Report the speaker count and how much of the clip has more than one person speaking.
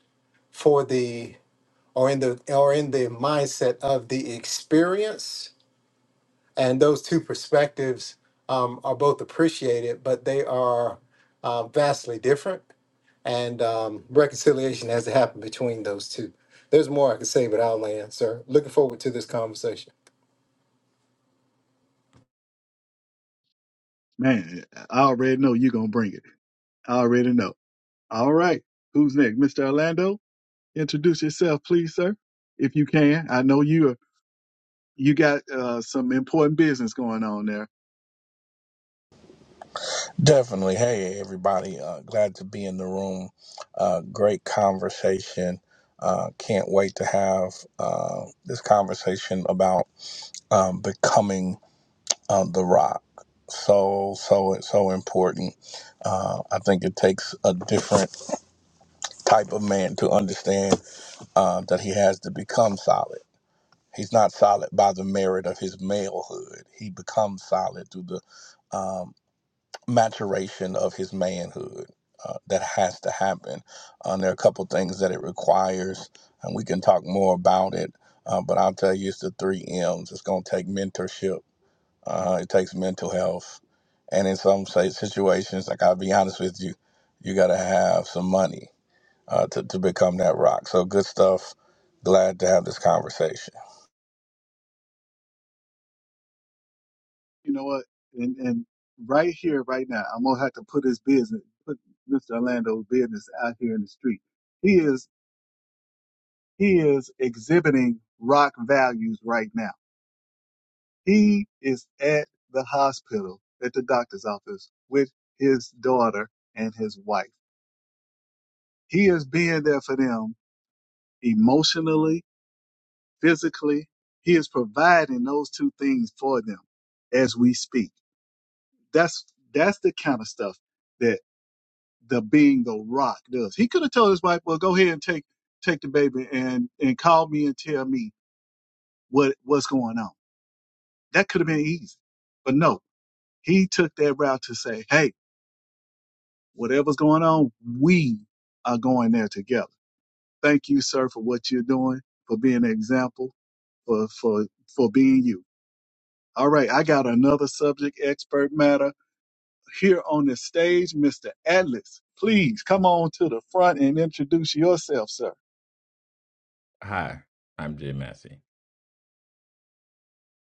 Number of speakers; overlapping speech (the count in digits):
4, no overlap